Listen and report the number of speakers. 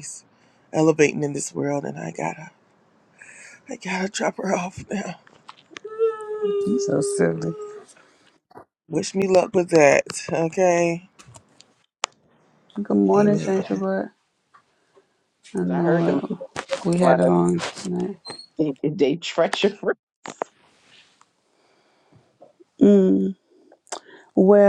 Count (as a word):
three